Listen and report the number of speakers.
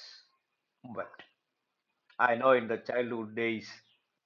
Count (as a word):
one